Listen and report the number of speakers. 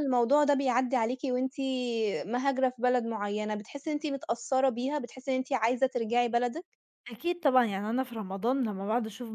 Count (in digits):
2